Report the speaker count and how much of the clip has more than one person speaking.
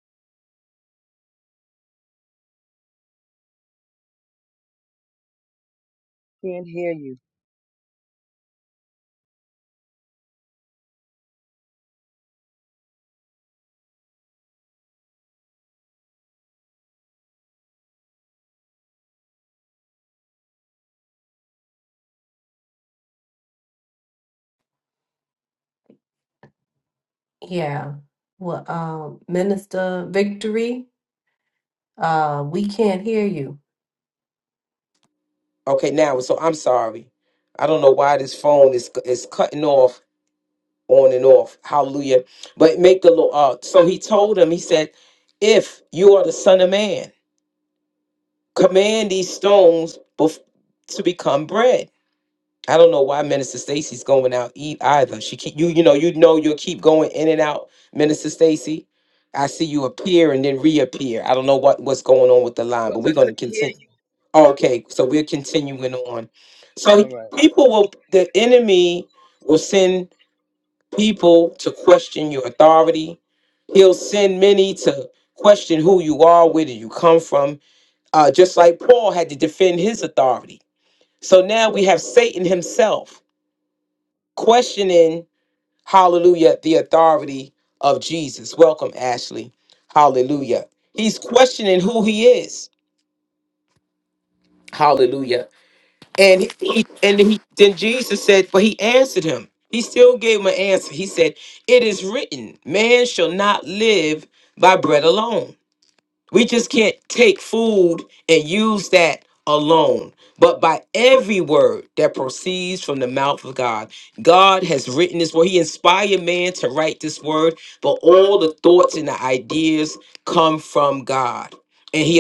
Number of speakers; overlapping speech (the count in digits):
3, about 1%